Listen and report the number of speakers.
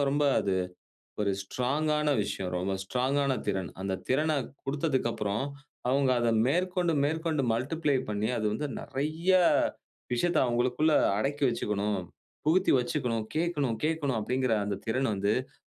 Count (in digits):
1